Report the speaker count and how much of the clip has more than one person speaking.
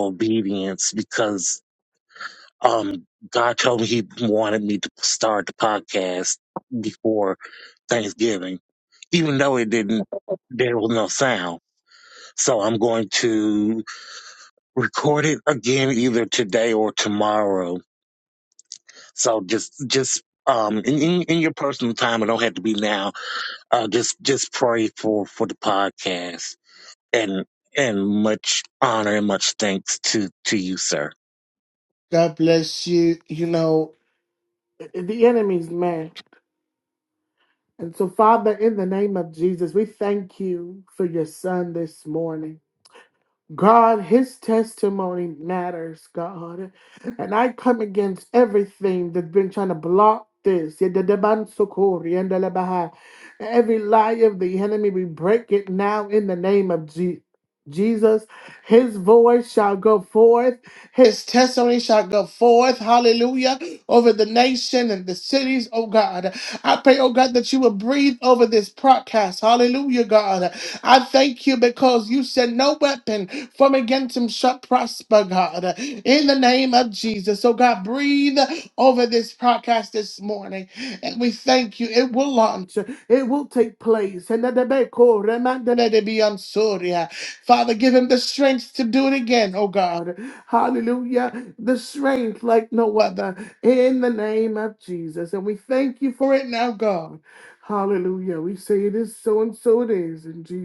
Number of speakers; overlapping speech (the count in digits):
2, no overlap